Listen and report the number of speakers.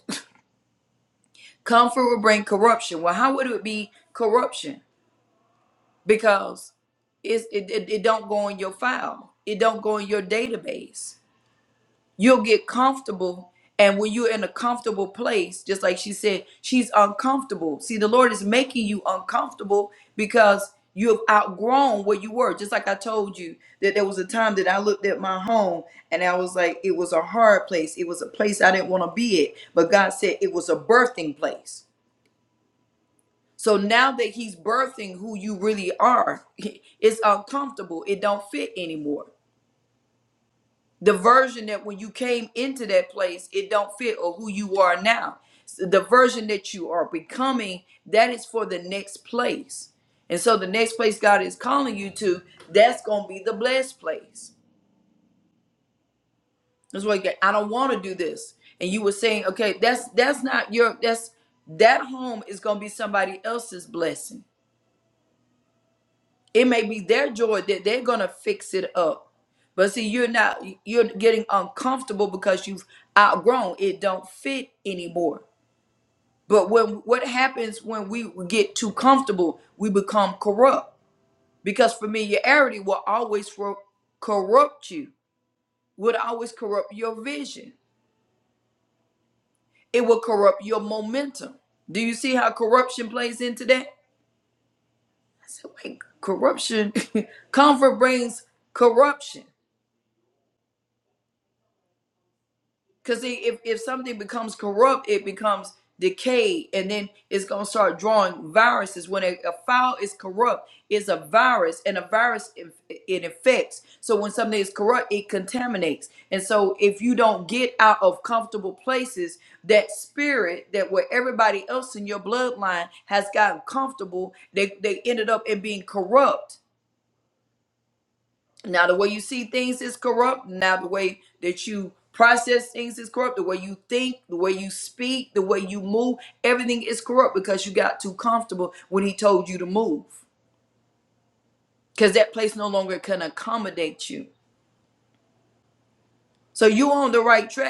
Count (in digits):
1